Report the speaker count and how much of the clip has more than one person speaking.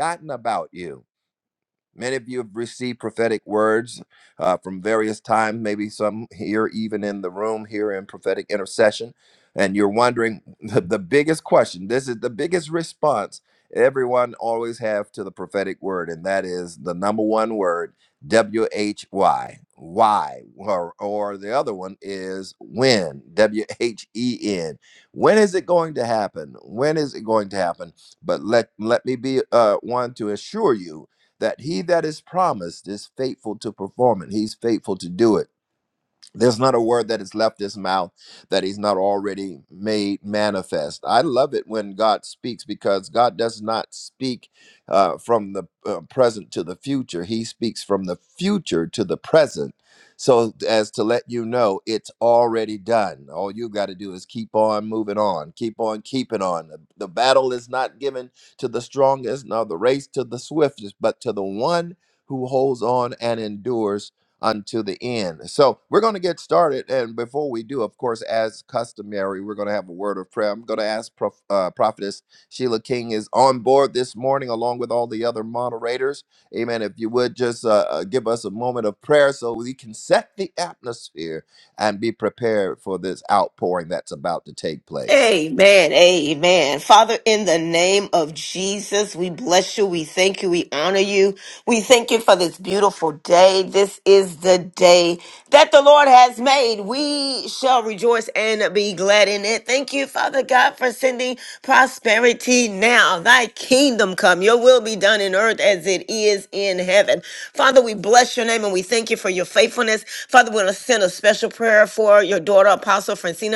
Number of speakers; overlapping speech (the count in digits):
2, under 1%